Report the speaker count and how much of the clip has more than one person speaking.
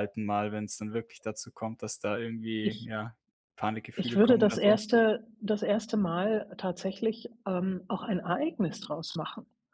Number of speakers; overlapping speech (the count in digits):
2, about 10%